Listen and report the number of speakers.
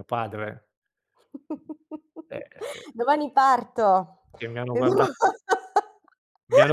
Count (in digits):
2